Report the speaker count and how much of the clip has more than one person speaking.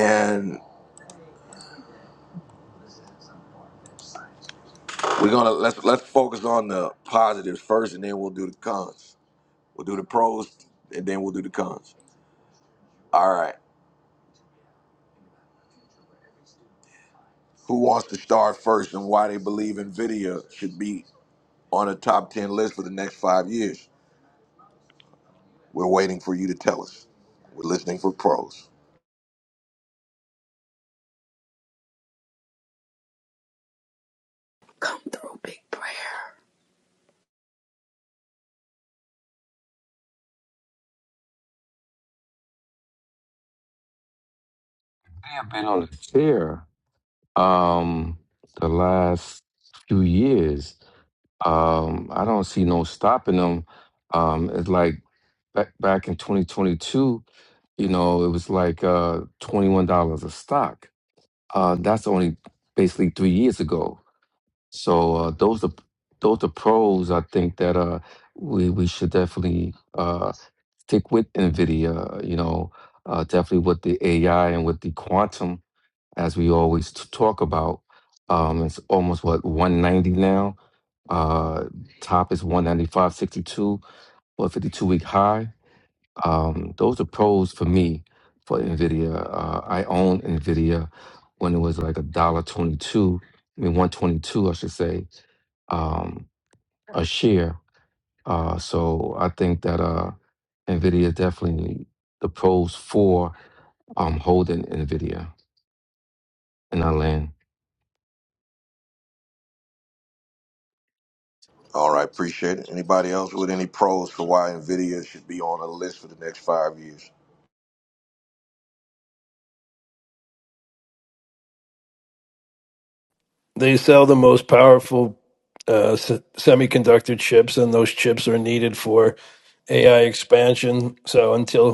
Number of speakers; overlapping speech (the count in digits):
4, no overlap